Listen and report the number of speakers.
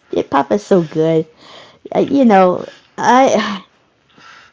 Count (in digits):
1